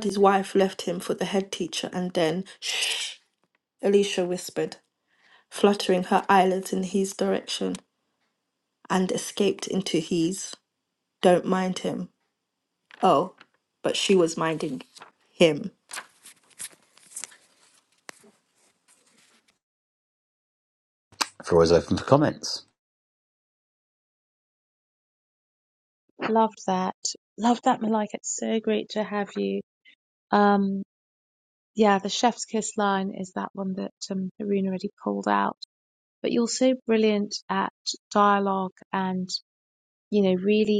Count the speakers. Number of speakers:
three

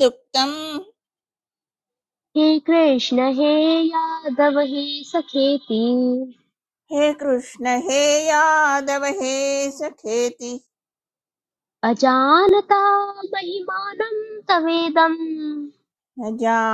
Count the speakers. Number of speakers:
two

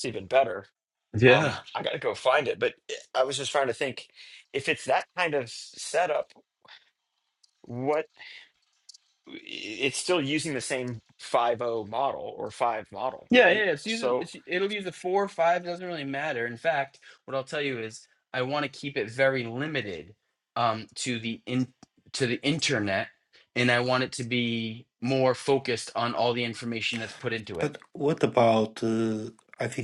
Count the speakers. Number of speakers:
three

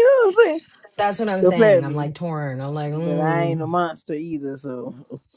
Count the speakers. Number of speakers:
two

